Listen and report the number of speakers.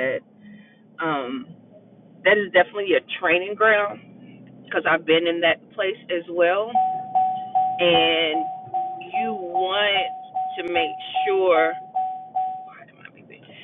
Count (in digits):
1